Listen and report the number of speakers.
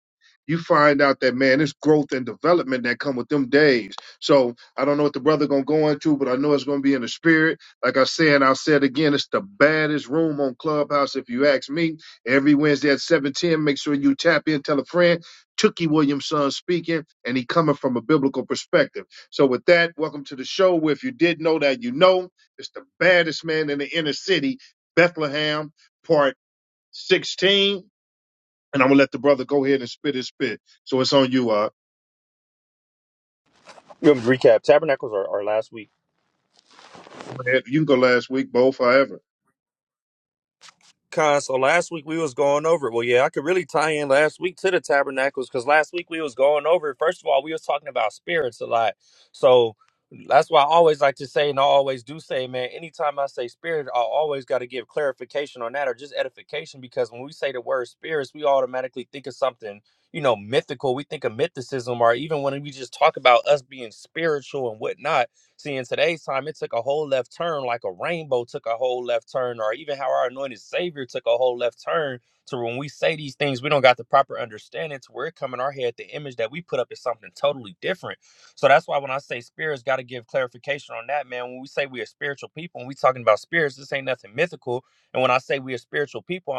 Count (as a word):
two